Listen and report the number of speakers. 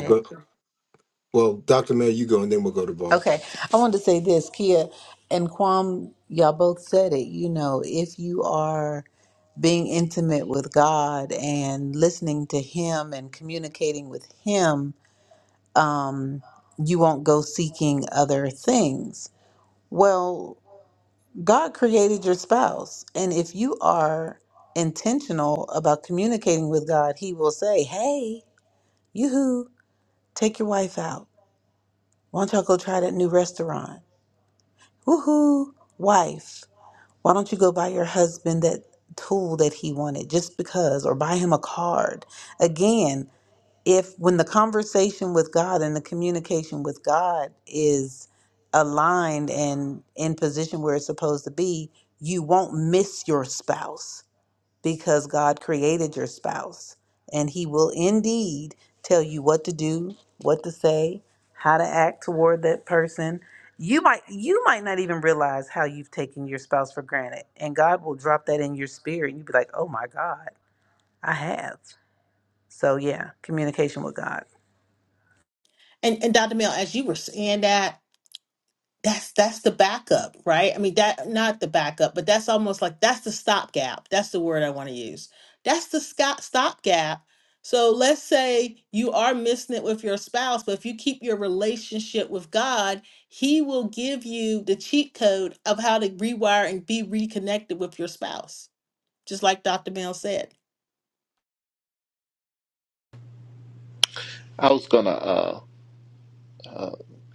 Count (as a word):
four